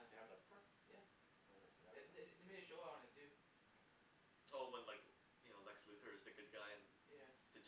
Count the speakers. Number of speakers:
3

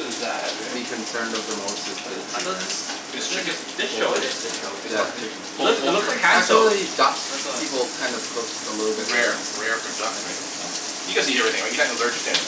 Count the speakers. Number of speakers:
3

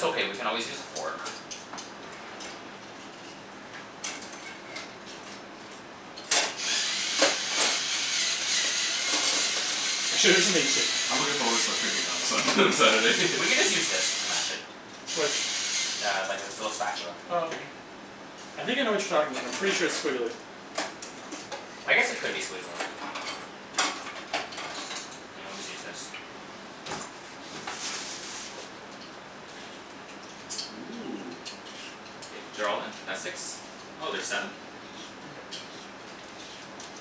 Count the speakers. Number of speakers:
3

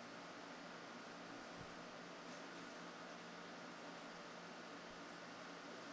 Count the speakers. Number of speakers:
0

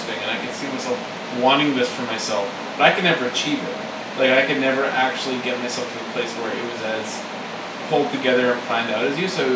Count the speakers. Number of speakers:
1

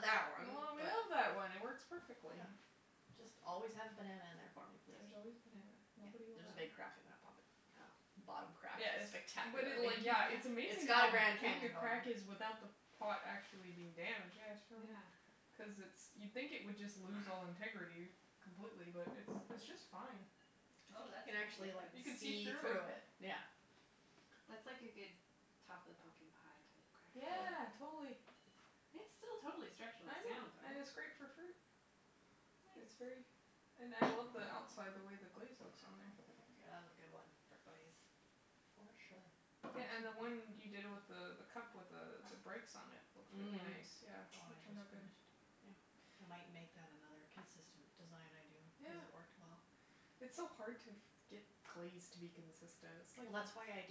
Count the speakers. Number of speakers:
3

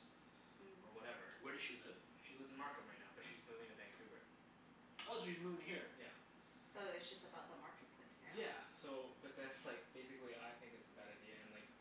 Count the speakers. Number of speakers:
3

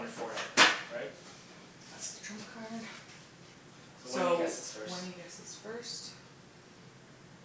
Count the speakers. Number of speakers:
2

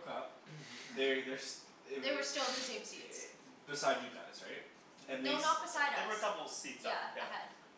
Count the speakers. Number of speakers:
3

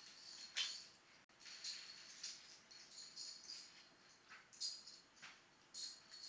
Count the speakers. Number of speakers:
0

